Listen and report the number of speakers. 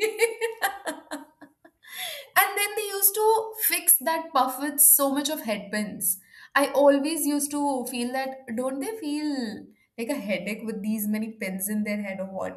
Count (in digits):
1